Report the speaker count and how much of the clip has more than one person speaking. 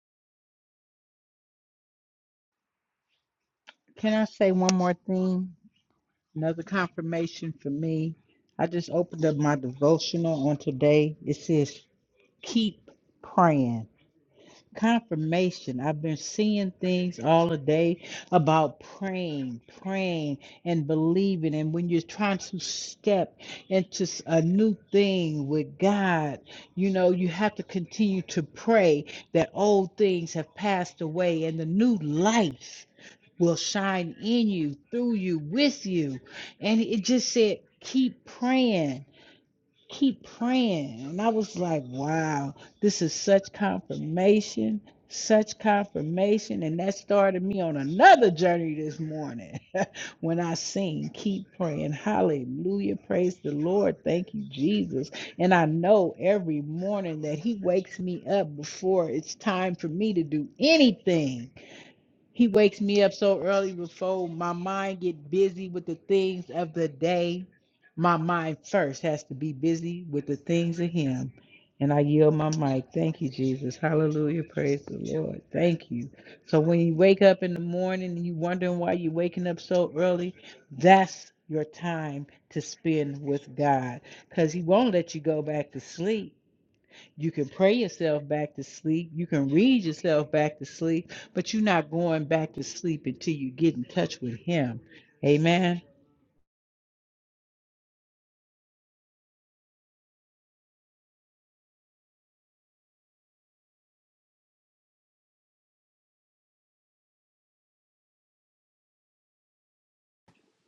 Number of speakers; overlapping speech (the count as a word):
one, no overlap